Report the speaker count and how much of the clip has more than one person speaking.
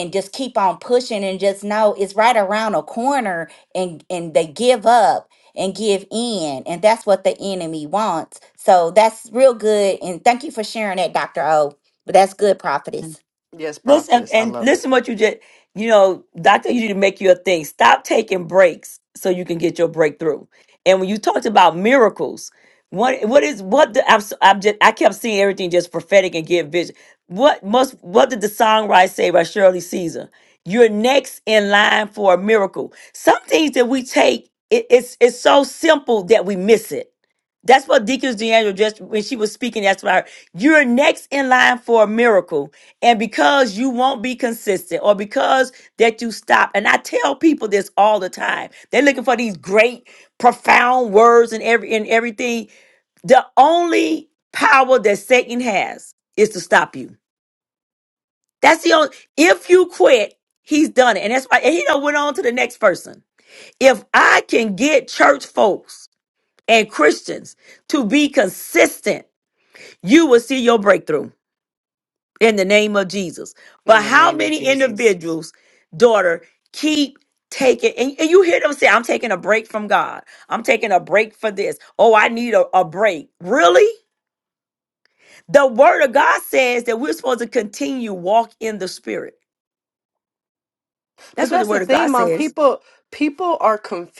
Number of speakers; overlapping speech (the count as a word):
three, about 3%